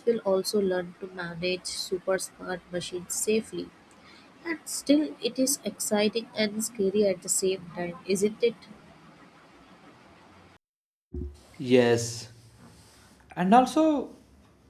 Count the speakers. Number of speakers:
2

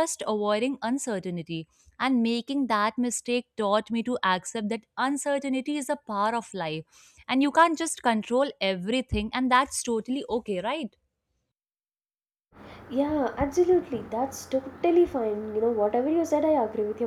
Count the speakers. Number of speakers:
2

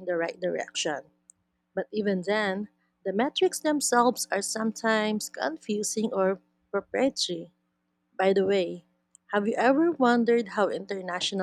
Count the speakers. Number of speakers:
1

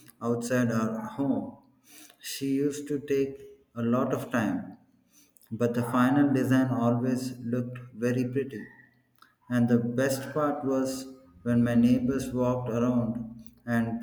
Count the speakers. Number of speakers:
1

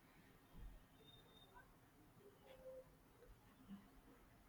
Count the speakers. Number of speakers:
0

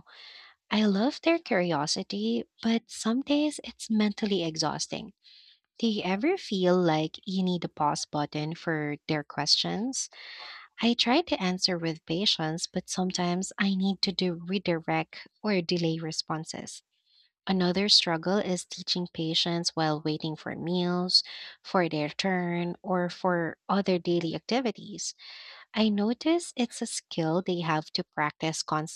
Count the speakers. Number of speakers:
1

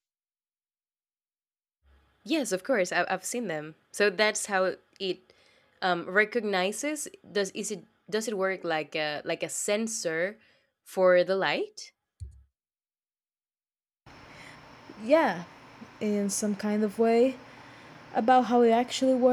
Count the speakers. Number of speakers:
2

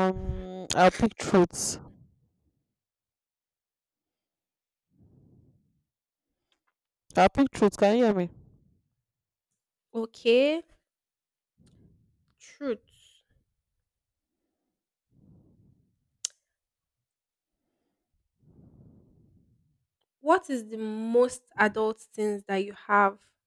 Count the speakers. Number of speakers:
2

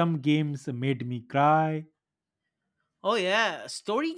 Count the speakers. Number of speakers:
2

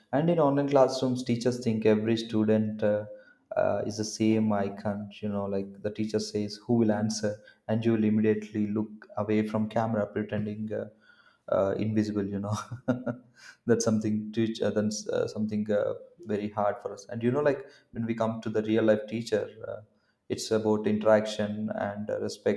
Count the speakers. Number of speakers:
1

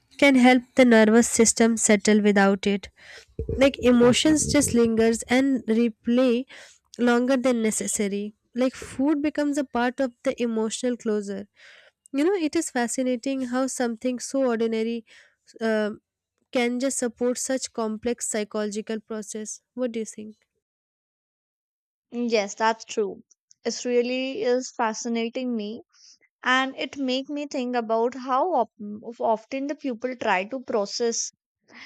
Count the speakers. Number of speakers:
2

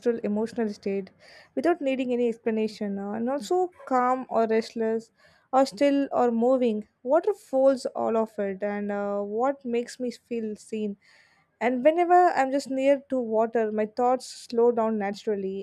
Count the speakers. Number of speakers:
1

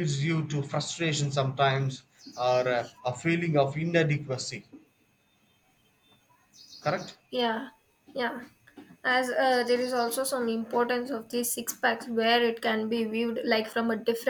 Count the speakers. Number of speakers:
2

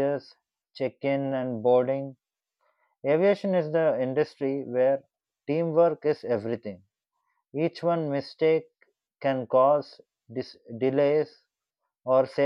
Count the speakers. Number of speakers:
1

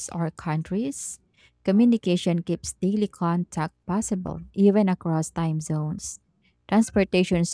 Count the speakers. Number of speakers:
1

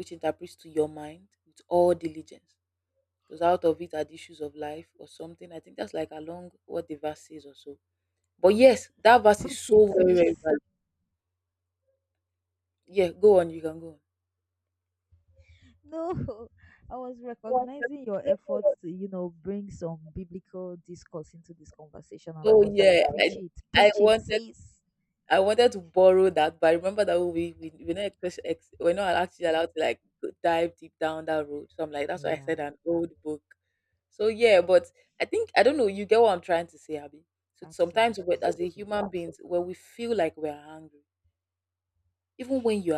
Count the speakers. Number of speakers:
2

